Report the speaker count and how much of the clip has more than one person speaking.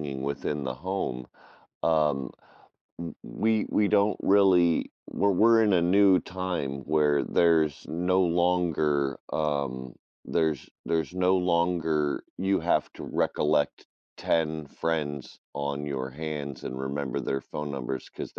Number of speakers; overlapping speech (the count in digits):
1, no overlap